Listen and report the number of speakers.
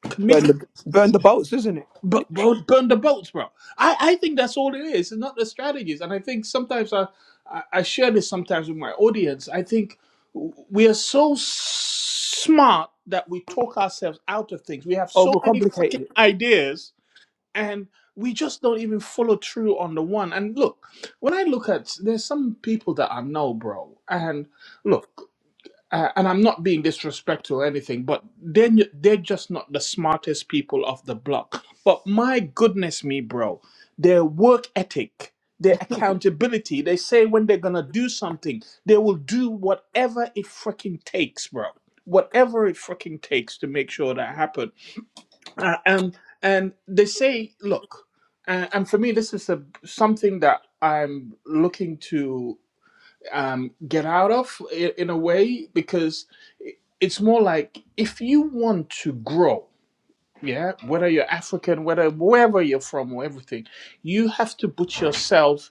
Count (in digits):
2